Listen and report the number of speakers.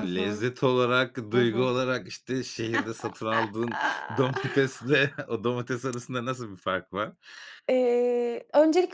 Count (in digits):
2